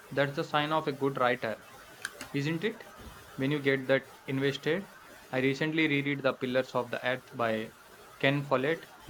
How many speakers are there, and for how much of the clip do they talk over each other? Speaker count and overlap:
1, no overlap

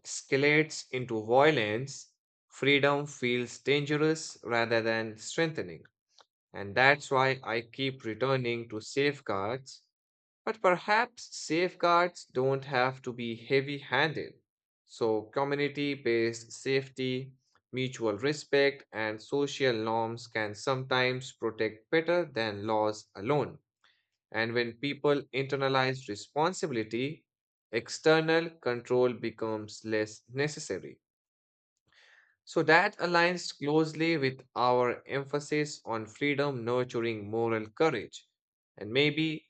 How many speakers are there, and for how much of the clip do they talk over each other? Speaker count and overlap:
1, no overlap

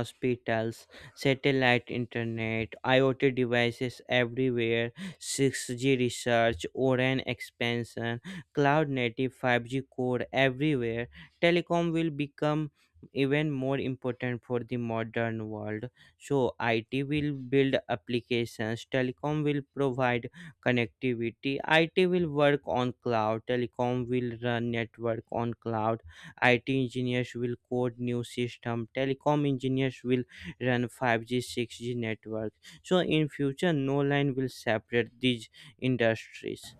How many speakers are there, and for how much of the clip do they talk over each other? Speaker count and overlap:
1, no overlap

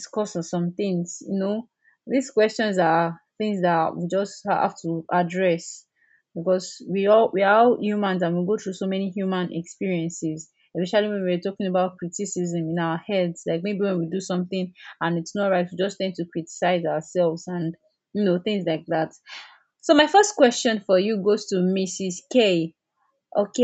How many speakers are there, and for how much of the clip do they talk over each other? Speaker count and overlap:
1, no overlap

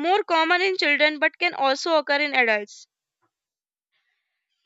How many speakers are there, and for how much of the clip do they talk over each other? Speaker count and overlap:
1, no overlap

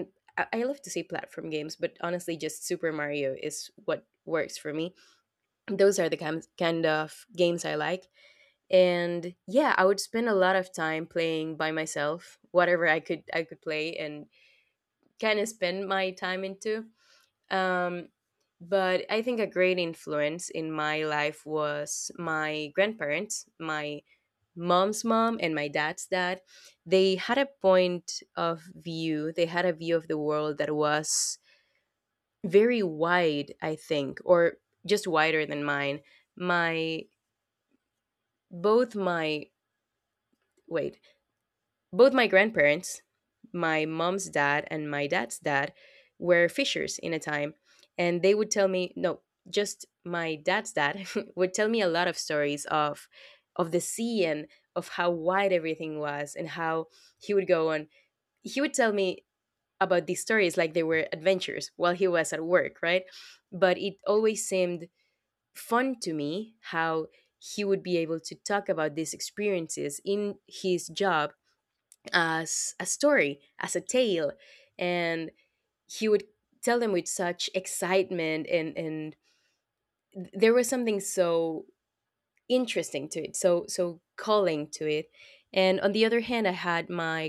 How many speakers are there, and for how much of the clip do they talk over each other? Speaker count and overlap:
1, no overlap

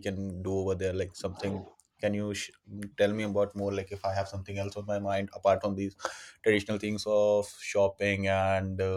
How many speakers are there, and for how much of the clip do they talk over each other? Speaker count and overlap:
1, no overlap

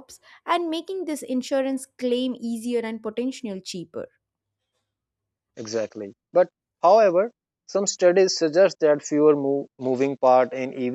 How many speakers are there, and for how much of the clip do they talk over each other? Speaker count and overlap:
2, no overlap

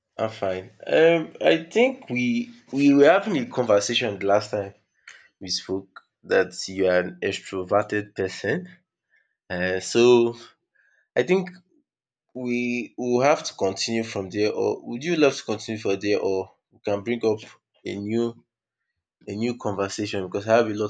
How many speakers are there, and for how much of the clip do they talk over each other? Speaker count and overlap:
1, no overlap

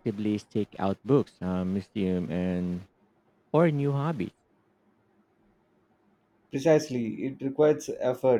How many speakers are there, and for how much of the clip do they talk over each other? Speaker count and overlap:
2, no overlap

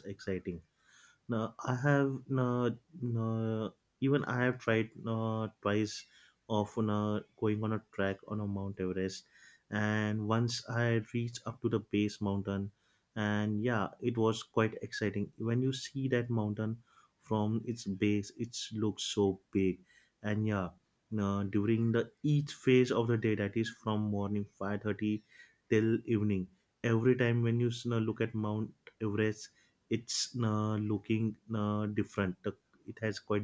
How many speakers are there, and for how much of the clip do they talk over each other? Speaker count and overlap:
1, no overlap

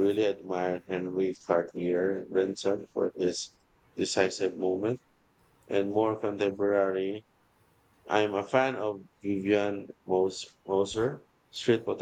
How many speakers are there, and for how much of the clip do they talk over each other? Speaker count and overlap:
1, no overlap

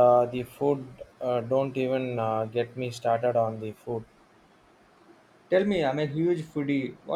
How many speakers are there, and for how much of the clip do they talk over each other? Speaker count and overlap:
2, no overlap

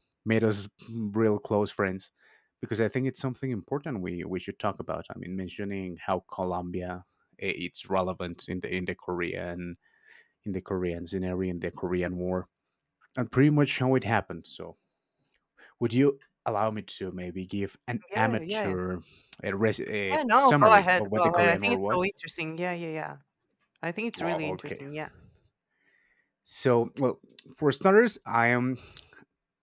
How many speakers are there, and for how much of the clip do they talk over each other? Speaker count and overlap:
2, about 11%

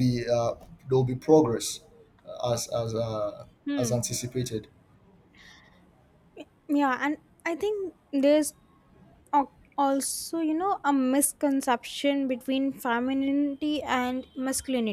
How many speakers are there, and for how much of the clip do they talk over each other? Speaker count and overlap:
2, about 2%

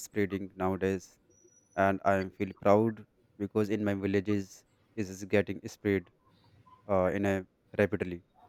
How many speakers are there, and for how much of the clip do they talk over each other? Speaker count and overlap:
1, no overlap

